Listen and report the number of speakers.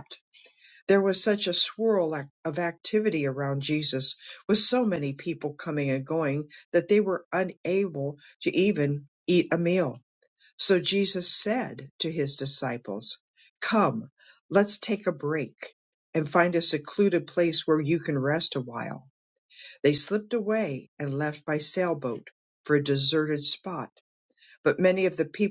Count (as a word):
one